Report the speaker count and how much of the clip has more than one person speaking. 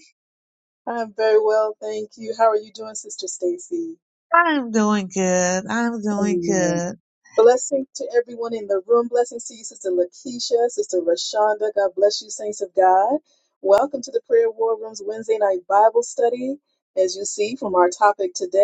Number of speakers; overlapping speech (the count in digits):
2, about 3%